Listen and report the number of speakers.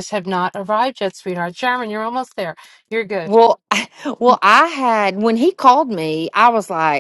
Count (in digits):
2